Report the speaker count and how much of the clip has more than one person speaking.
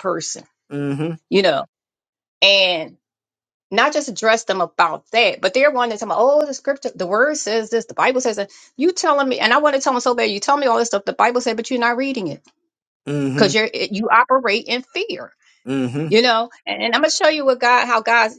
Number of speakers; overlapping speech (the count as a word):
two, about 1%